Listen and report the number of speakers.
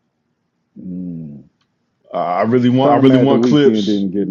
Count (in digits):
2